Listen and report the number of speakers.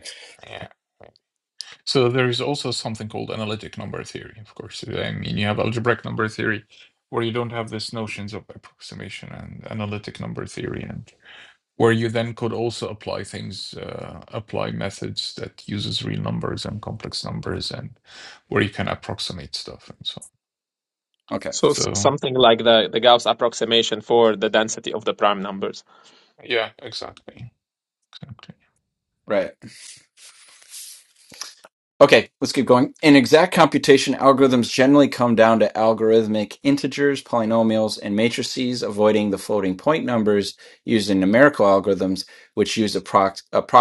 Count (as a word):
three